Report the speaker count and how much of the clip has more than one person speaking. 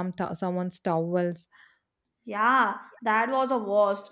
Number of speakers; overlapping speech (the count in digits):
2, no overlap